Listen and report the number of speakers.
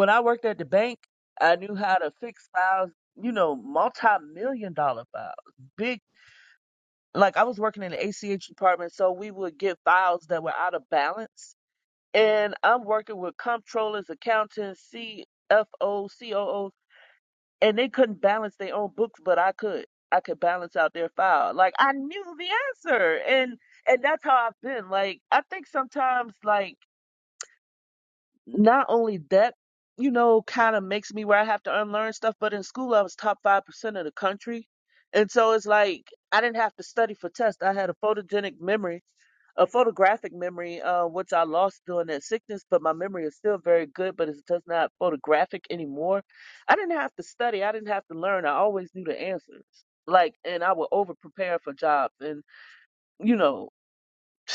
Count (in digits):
1